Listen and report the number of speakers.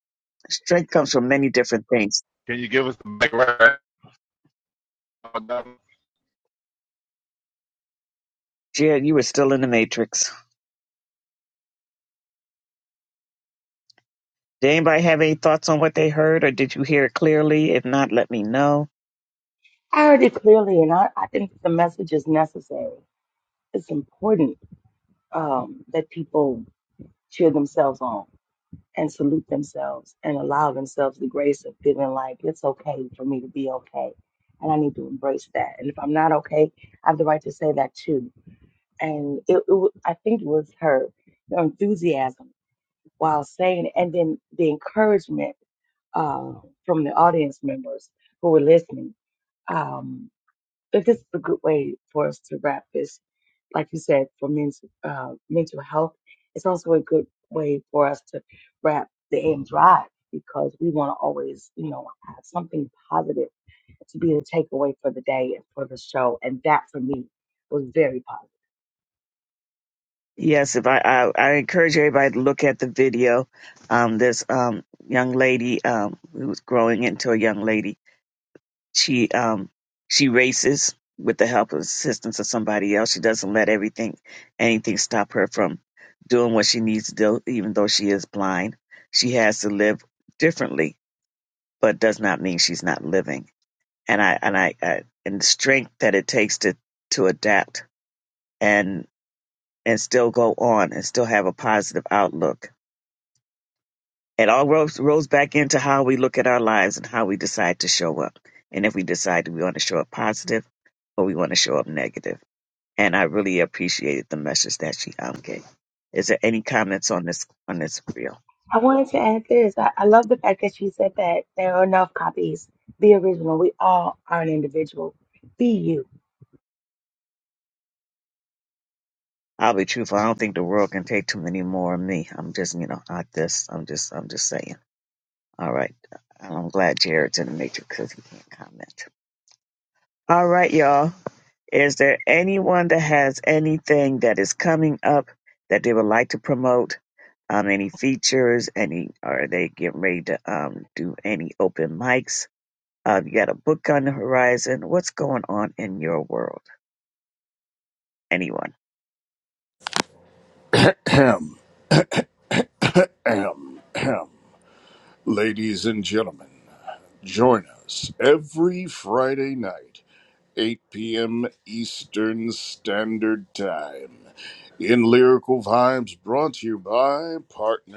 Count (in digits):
4